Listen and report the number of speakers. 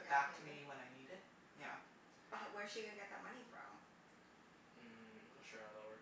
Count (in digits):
3